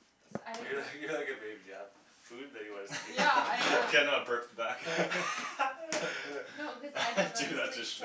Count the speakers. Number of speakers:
three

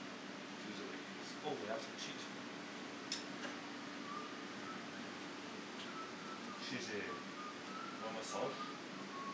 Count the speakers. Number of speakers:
one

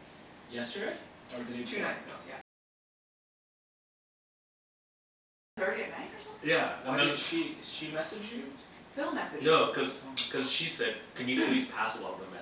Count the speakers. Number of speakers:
three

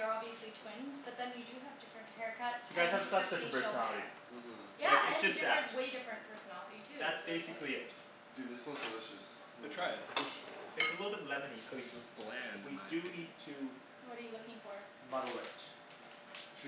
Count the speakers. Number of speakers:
four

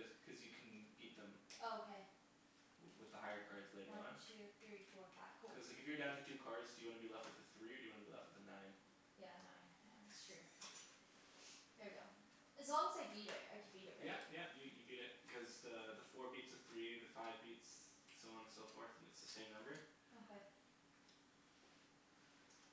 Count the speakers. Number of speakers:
two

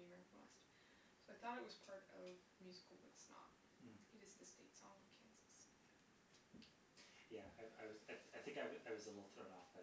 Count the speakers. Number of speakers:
two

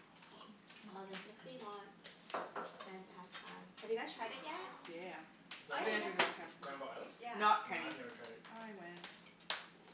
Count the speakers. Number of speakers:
three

